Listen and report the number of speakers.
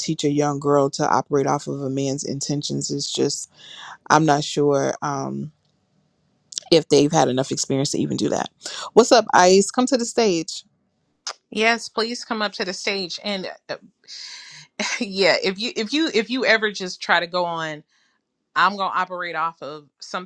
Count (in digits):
2